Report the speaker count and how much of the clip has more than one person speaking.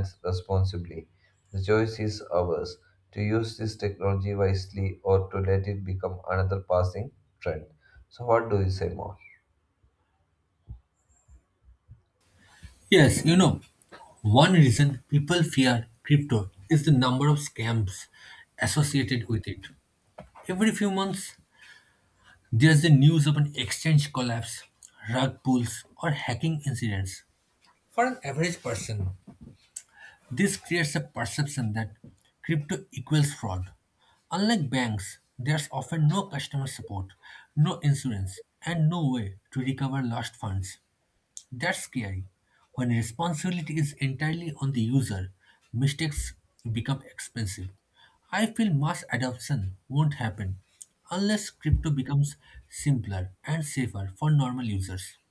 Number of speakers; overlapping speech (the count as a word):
two, no overlap